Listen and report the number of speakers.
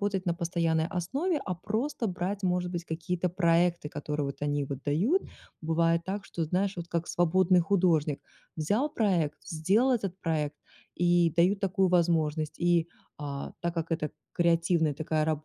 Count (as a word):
one